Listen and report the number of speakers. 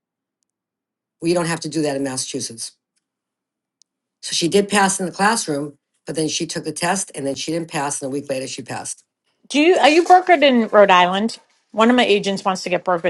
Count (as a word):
two